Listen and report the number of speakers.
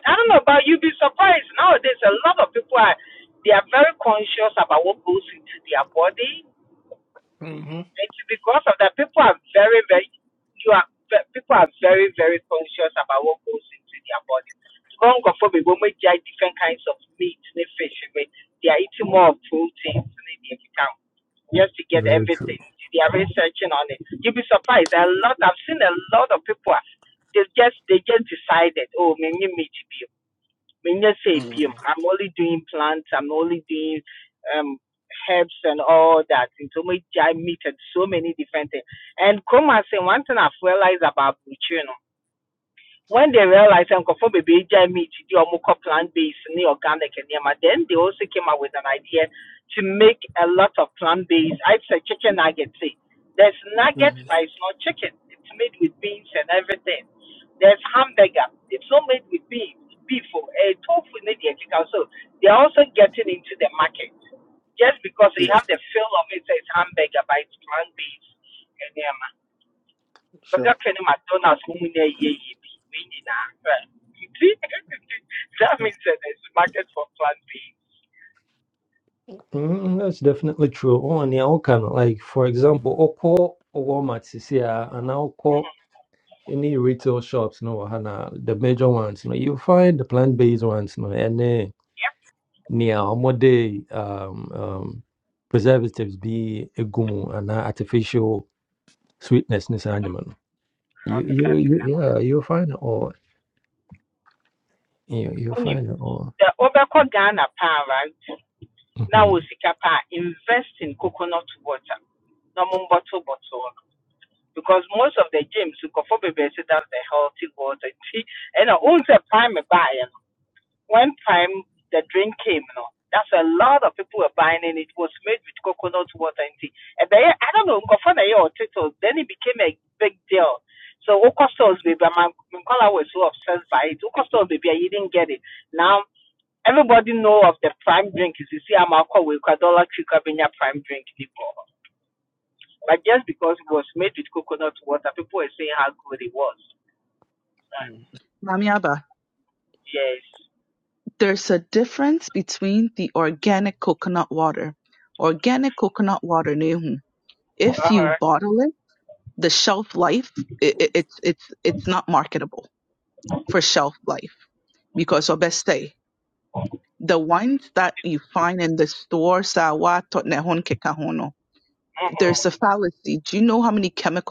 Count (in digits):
4